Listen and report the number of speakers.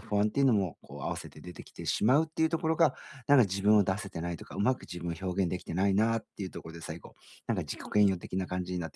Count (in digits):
1